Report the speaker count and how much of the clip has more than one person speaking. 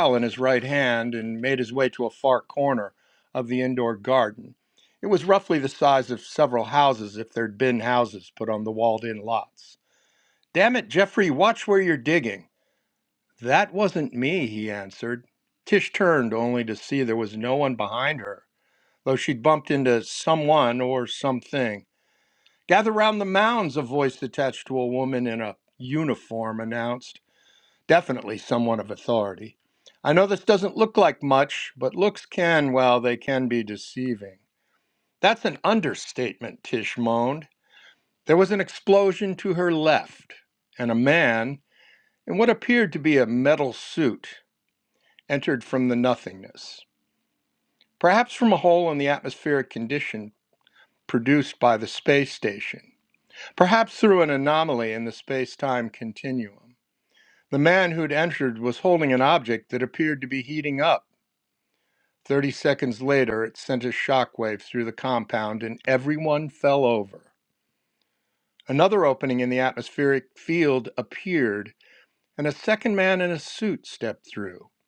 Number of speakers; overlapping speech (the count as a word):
one, no overlap